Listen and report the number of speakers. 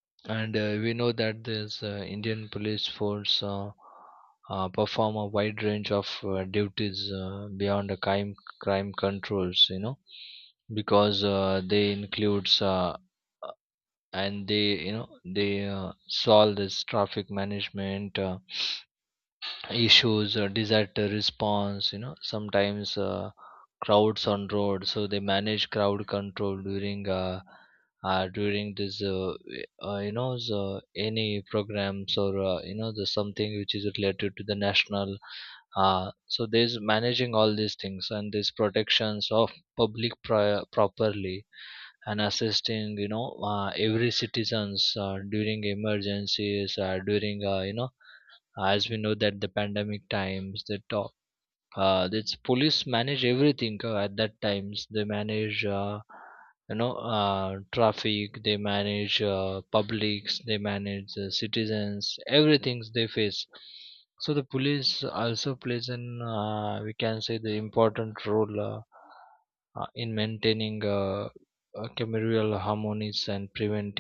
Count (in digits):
1